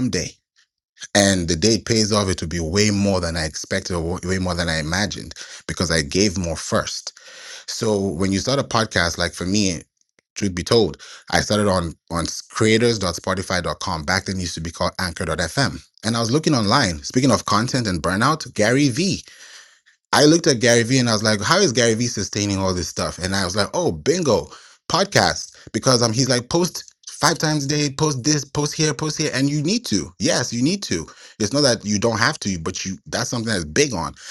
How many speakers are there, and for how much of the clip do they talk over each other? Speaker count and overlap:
one, no overlap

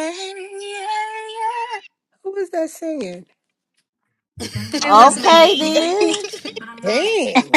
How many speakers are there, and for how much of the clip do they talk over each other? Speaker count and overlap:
three, about 13%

